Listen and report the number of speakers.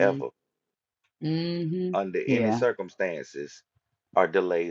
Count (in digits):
2